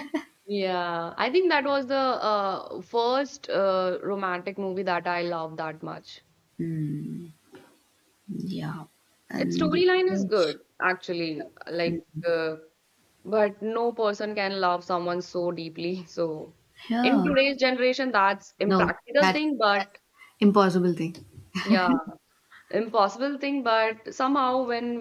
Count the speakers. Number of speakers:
two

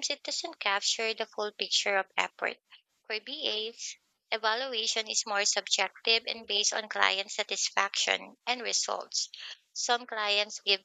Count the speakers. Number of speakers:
one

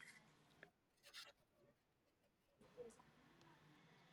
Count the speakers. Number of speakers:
zero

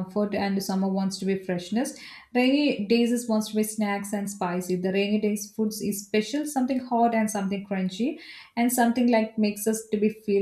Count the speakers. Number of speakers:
one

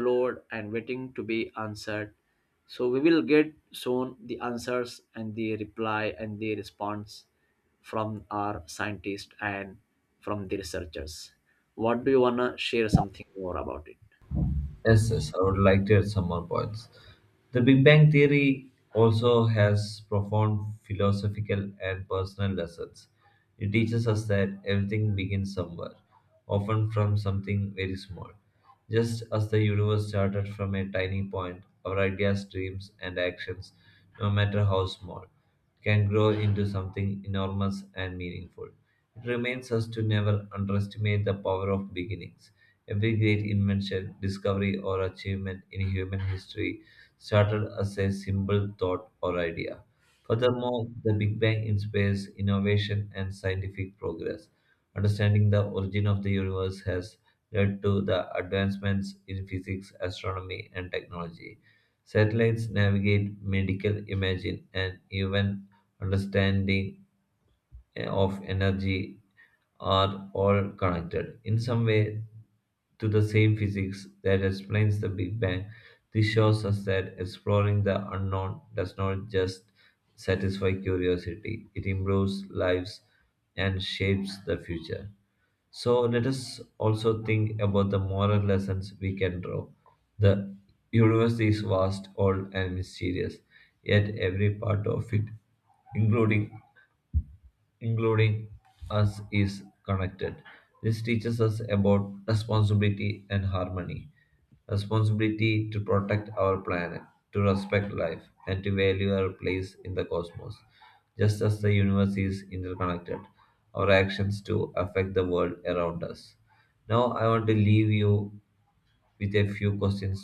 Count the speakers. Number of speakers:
two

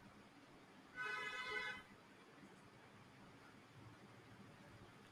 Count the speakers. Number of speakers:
zero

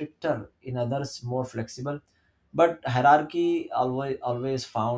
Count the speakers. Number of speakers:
one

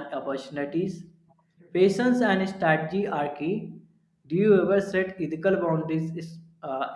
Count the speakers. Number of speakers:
one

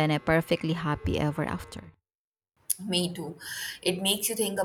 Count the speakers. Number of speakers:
two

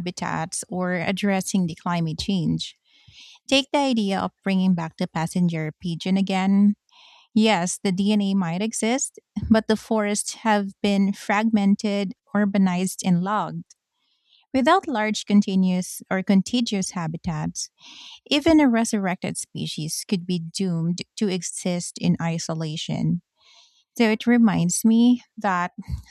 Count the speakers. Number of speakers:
one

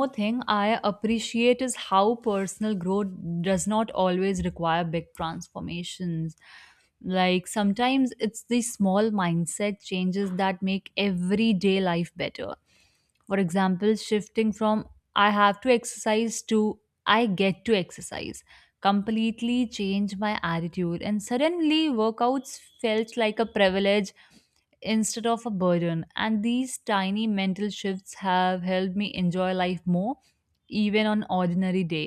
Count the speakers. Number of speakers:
one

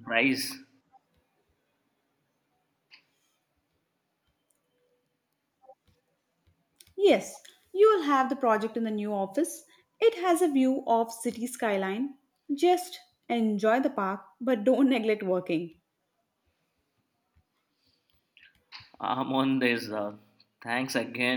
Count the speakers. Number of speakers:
two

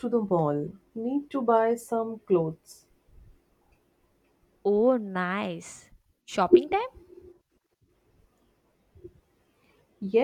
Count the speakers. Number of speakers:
two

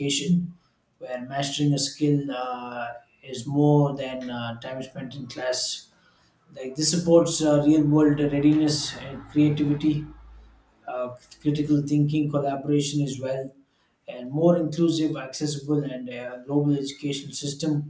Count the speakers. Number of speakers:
one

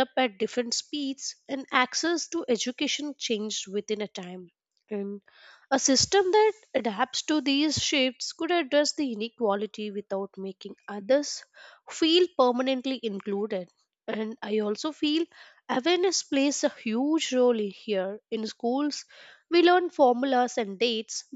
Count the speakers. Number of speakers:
one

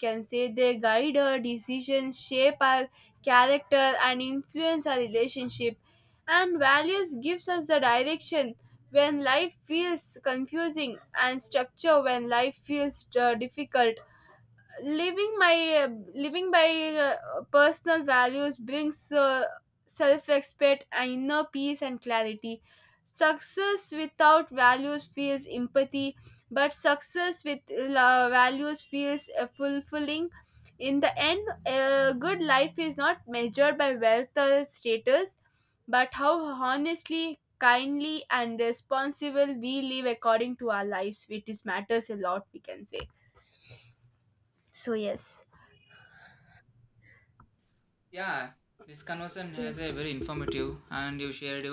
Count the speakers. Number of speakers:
two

